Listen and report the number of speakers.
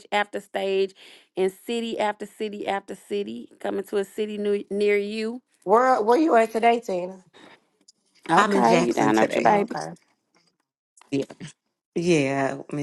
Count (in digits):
3